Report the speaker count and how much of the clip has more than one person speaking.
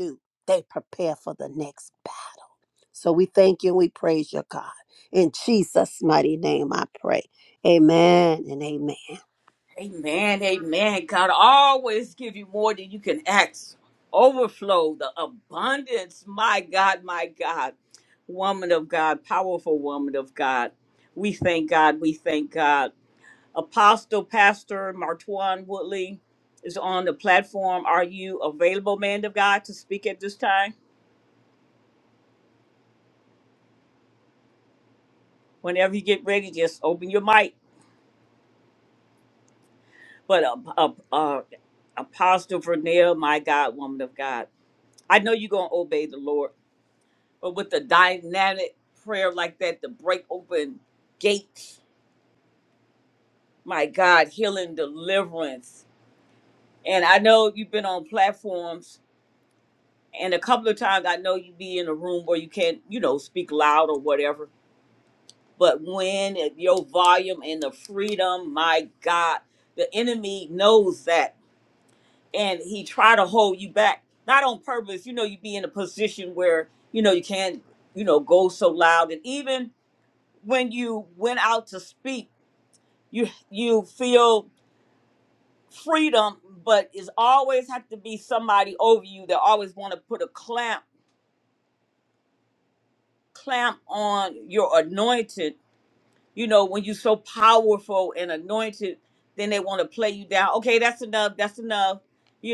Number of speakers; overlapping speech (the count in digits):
2, no overlap